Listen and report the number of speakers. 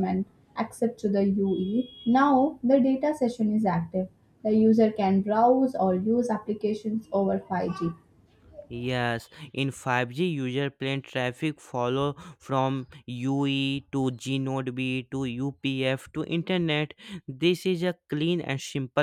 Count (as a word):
two